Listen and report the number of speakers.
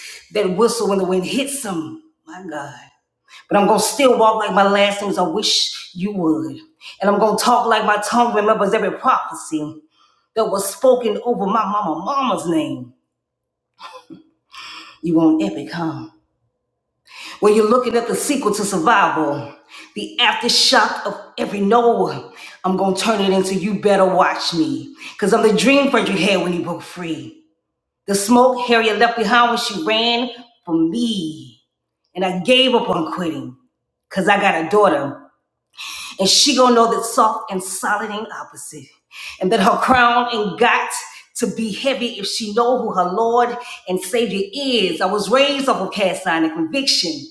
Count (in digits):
1